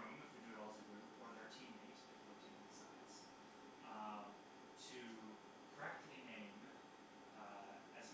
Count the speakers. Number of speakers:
1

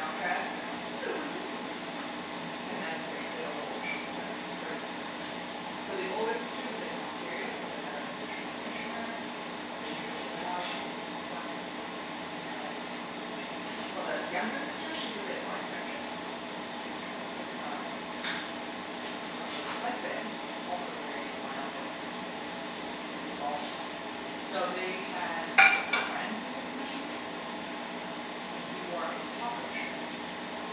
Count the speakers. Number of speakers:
1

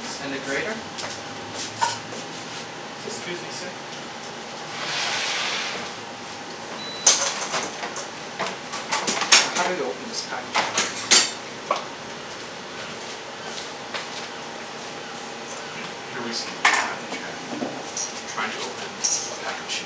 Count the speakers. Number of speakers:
2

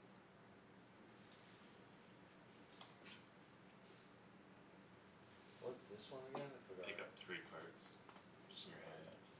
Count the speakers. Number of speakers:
2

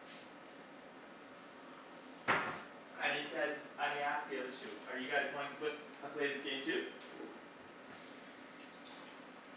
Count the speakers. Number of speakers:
1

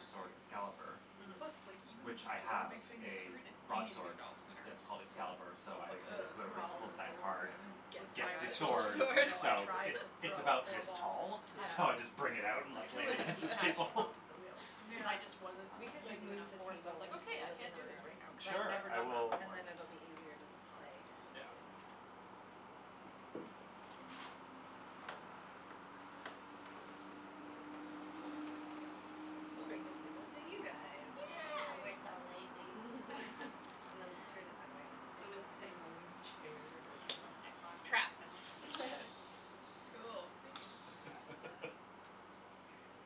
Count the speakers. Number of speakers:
4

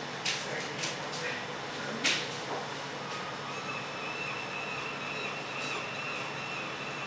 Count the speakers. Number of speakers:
0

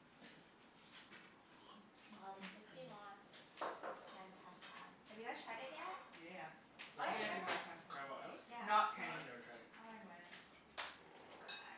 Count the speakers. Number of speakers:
3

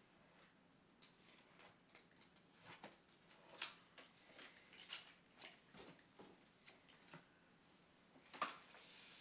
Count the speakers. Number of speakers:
0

